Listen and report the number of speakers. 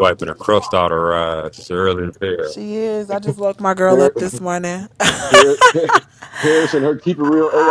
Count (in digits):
3